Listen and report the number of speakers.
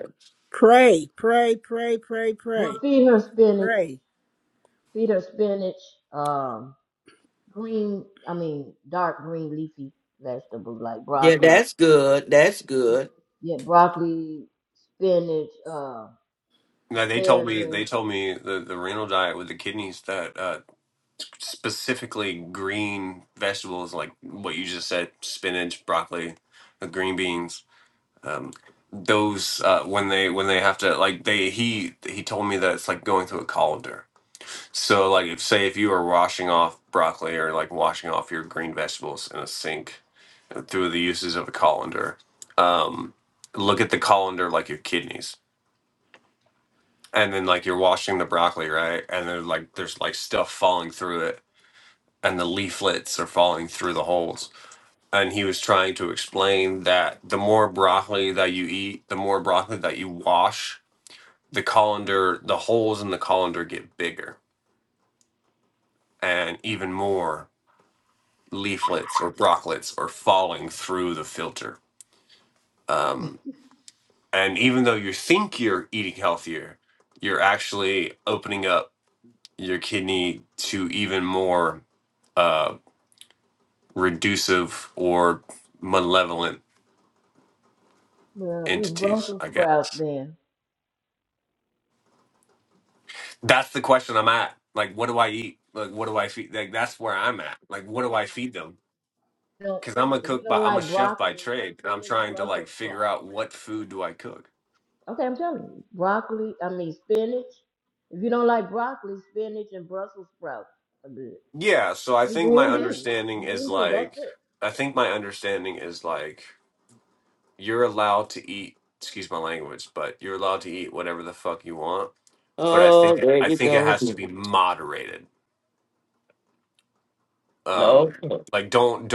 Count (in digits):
4